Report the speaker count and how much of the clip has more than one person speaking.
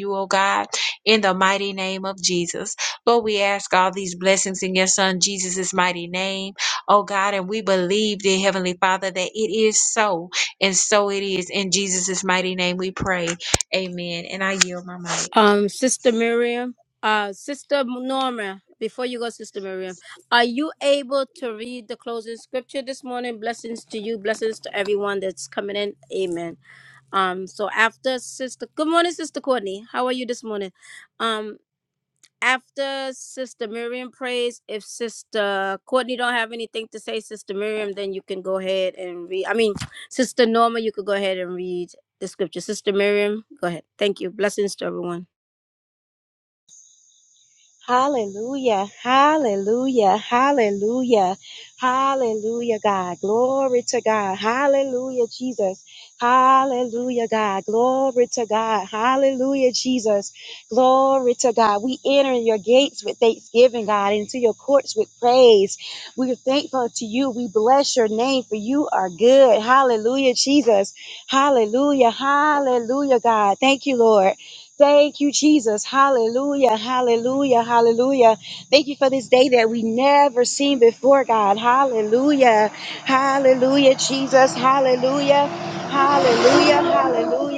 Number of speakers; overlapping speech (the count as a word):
three, no overlap